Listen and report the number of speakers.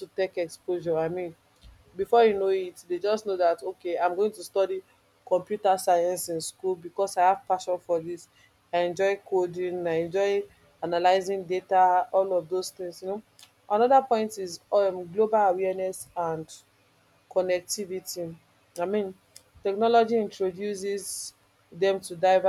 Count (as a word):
one